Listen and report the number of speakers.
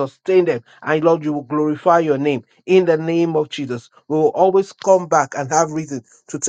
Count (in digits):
1